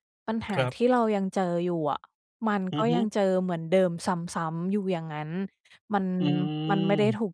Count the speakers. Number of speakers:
2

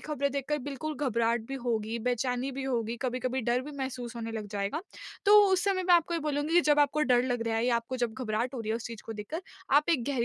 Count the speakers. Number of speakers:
1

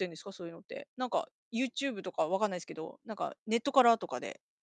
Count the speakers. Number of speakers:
1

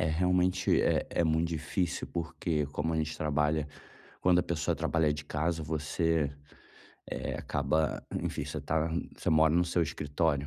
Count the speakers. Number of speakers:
1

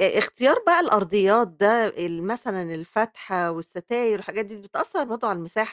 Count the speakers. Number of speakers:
1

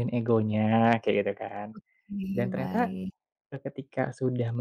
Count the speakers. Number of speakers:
2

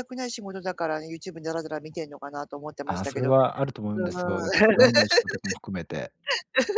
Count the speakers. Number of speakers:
2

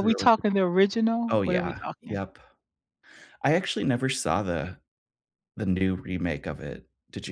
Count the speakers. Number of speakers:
2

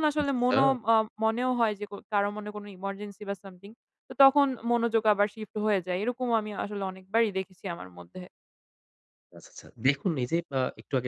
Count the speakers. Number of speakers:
2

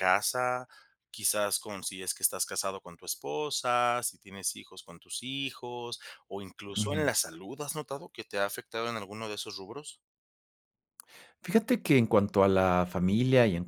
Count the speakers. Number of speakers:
2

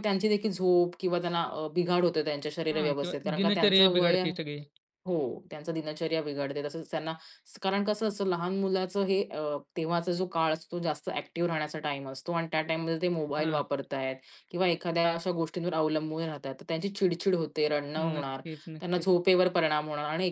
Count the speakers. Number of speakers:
2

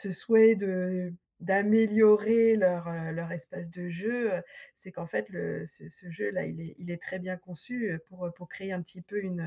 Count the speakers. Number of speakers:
1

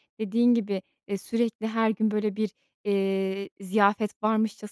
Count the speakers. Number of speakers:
1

